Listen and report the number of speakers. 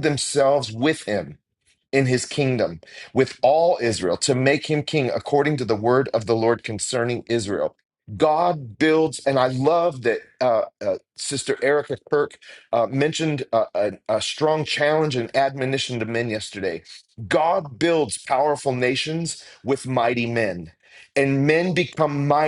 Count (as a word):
one